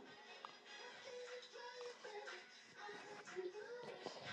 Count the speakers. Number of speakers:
0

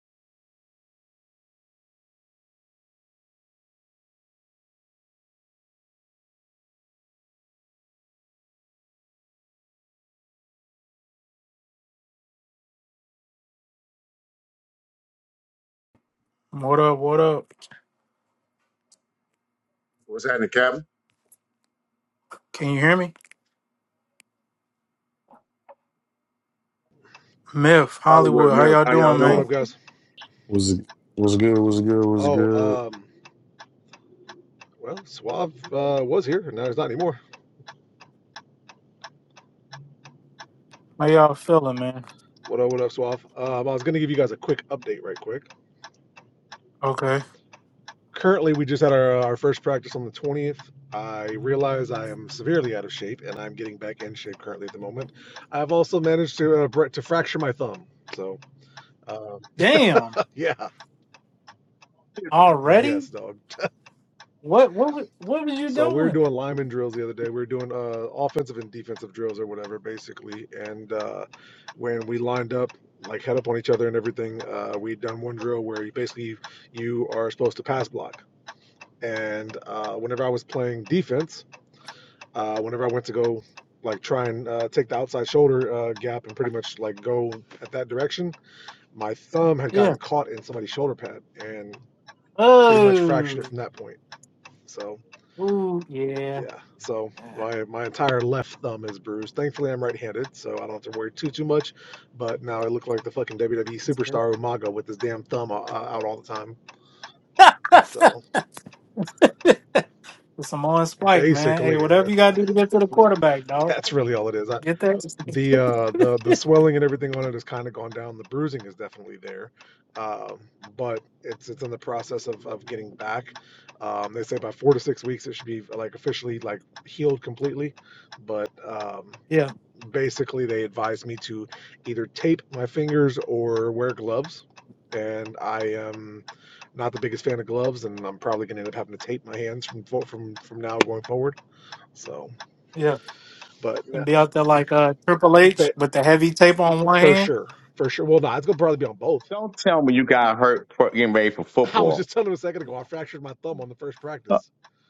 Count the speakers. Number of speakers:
5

